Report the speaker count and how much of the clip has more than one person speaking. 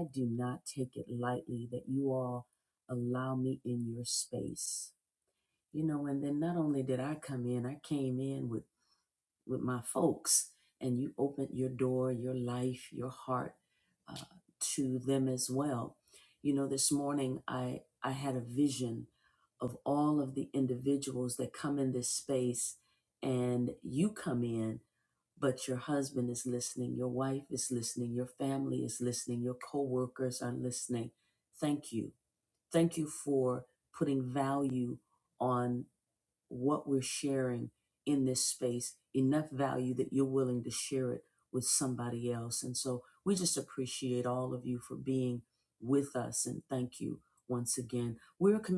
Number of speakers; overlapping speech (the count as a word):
one, no overlap